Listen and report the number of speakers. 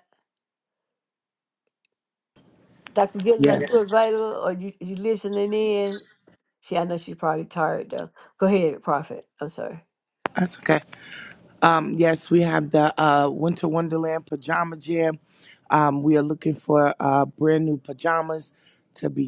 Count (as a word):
two